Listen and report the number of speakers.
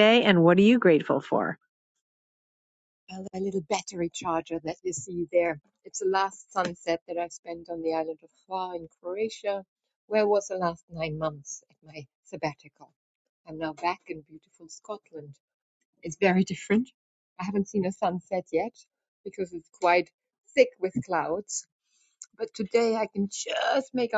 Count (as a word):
two